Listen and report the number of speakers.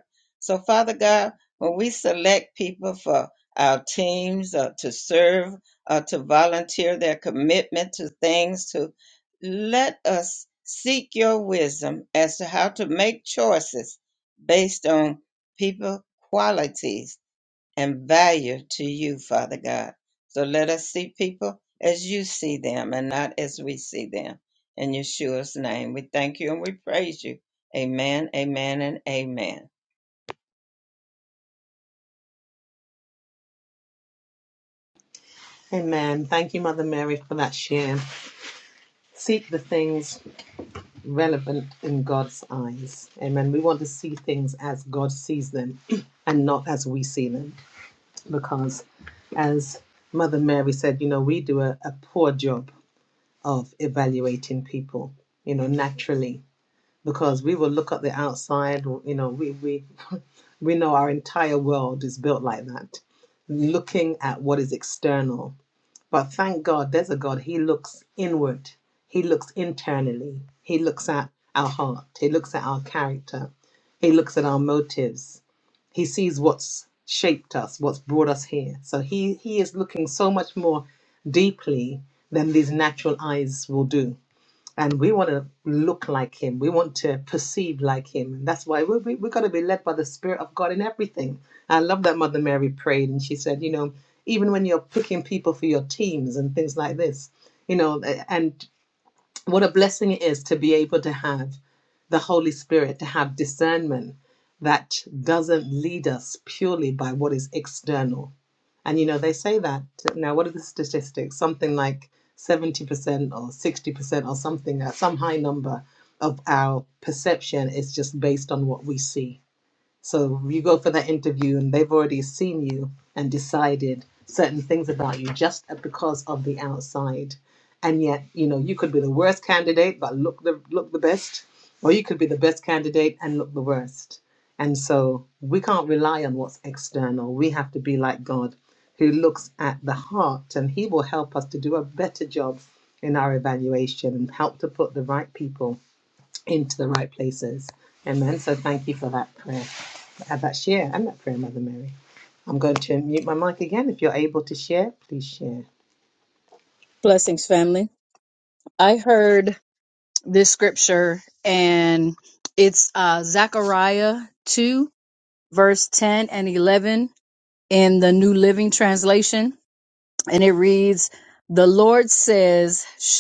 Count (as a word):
three